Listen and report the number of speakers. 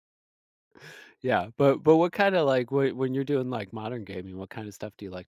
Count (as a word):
one